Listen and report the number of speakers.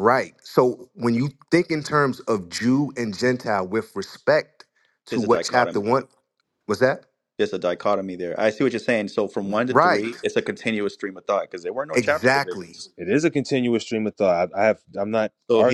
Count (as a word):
three